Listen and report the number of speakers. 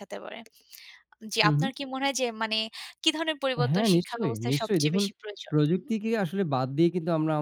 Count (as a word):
two